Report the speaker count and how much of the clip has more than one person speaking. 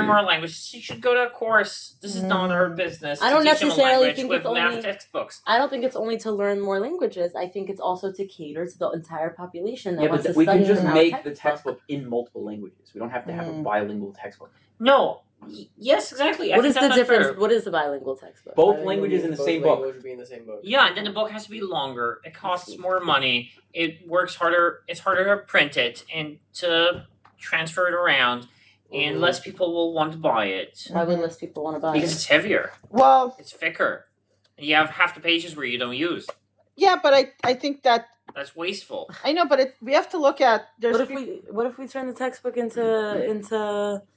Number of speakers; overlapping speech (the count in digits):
5, about 20%